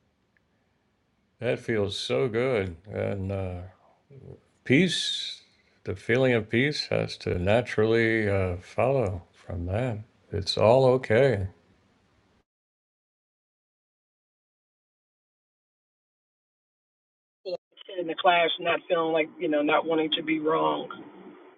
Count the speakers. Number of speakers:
2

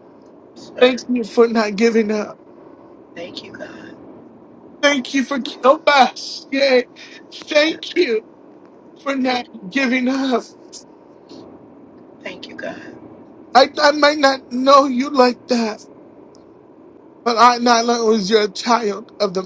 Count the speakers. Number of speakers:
2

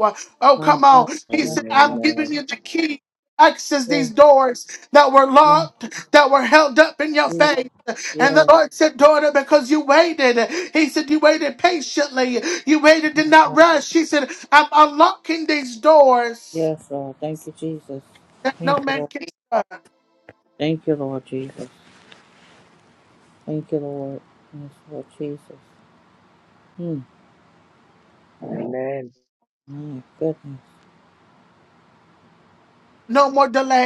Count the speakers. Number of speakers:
3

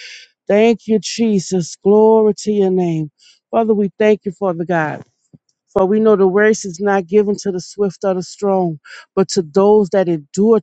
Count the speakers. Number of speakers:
1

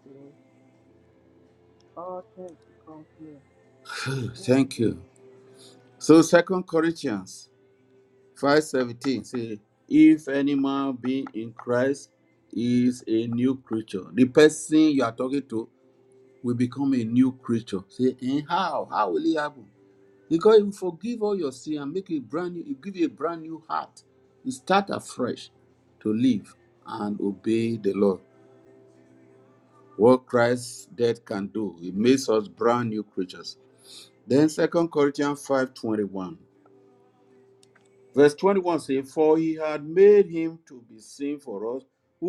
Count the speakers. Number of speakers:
2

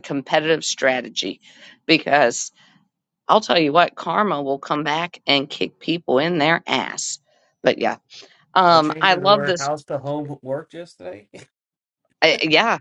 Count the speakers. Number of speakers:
2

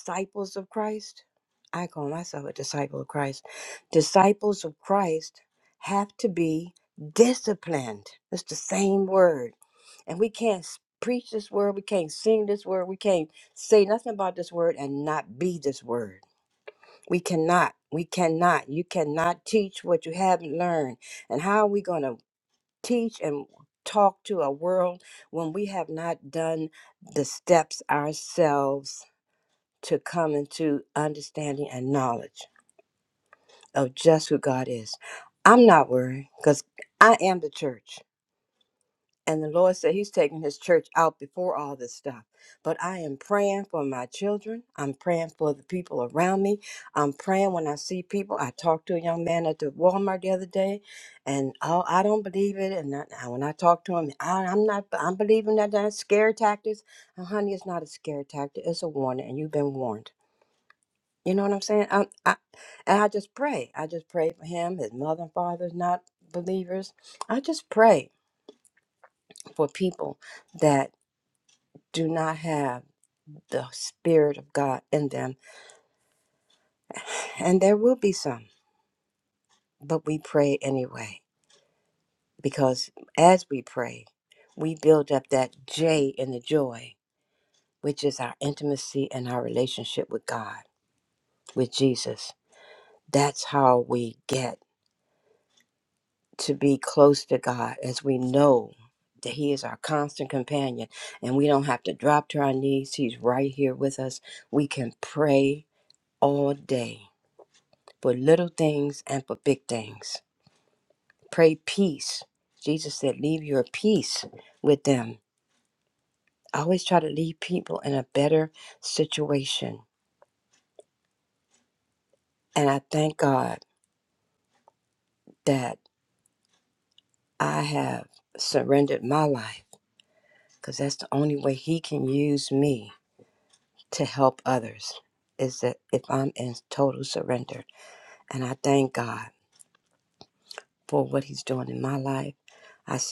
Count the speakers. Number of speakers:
1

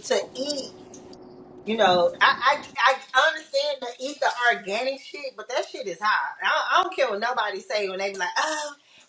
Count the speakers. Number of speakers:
1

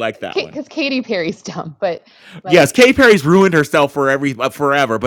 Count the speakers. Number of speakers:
2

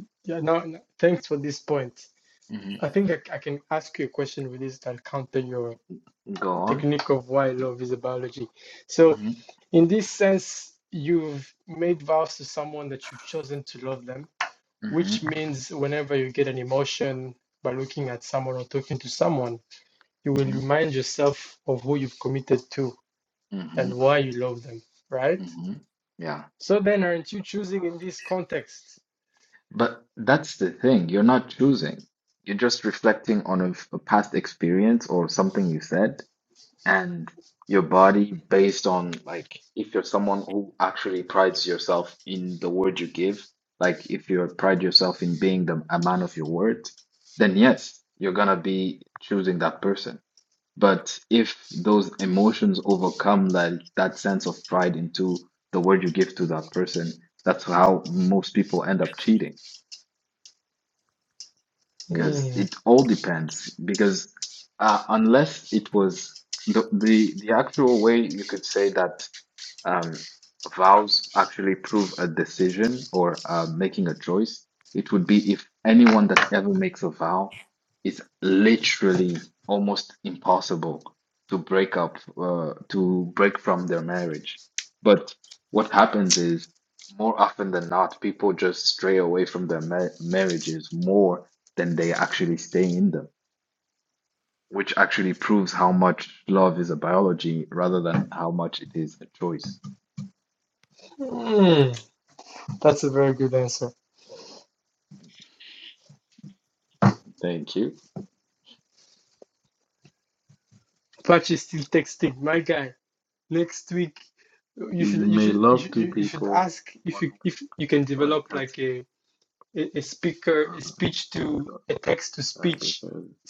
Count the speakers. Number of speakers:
2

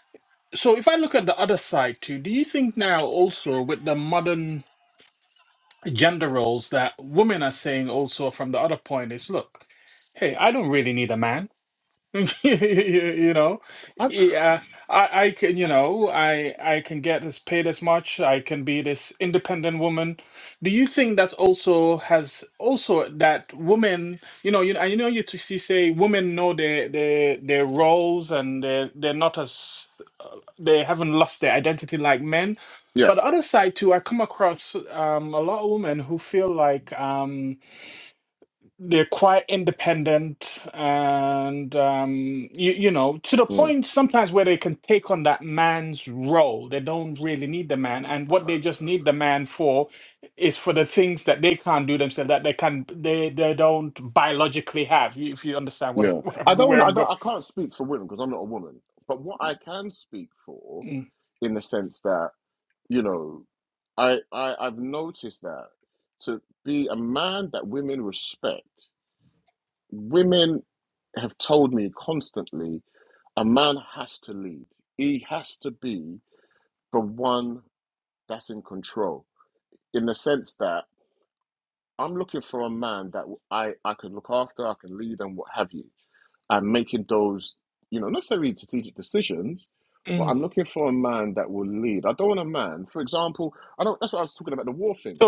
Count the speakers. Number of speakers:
2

